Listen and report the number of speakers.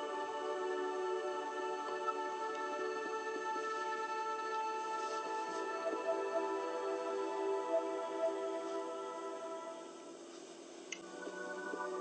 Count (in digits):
0